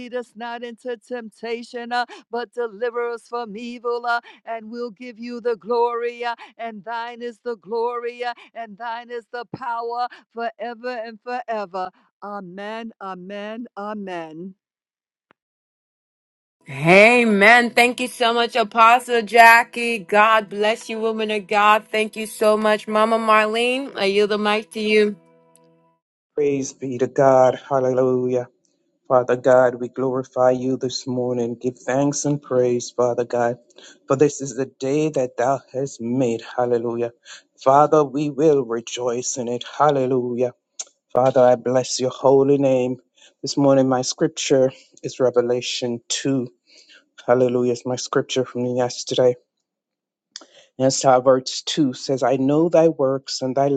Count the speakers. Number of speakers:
3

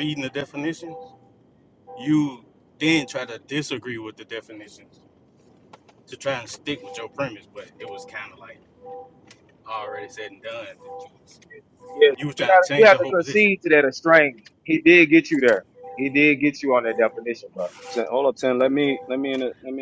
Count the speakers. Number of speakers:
3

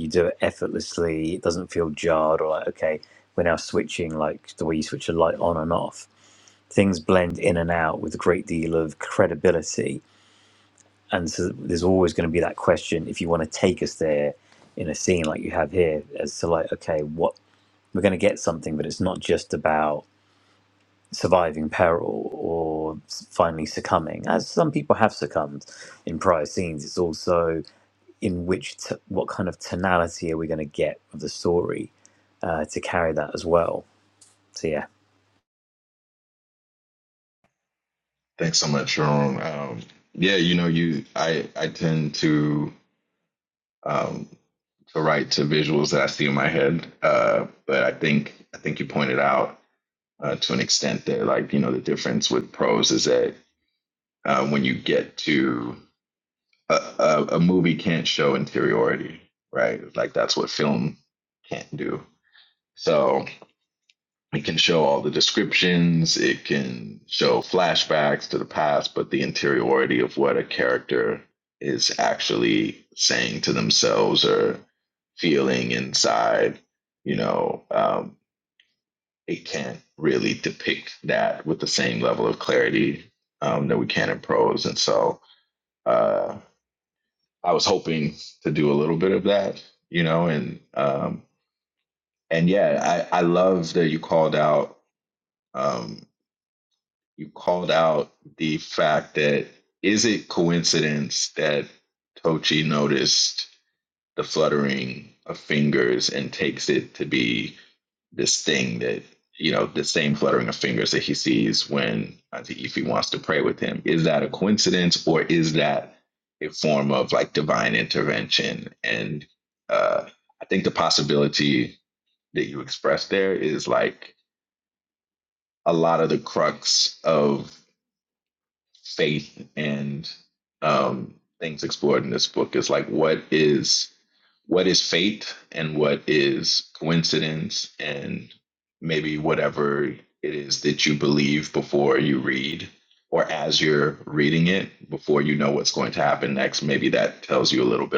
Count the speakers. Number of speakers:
2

